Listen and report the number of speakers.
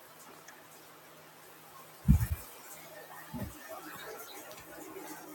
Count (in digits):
0